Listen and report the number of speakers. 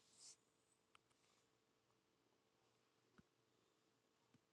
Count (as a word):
zero